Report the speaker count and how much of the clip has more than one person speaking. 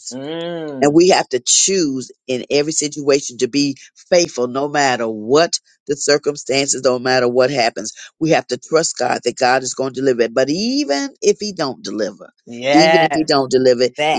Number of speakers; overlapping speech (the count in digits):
2, about 6%